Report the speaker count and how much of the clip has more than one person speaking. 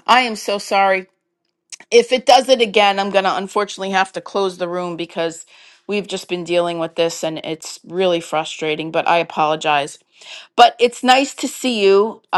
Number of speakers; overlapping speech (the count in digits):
1, no overlap